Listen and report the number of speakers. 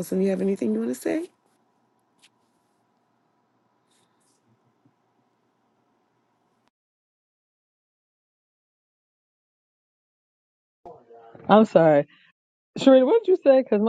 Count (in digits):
2